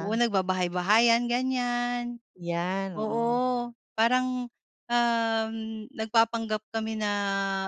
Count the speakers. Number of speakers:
2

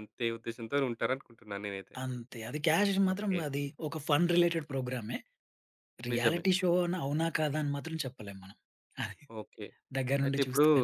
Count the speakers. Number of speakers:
2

